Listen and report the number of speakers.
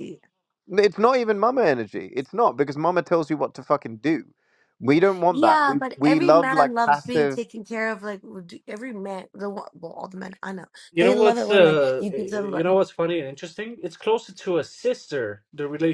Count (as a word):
three